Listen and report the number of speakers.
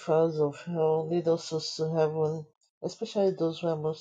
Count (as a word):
one